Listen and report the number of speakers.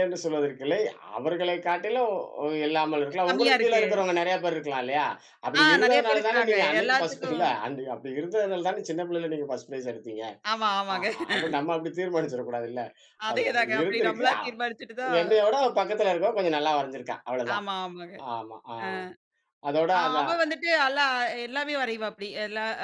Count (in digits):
2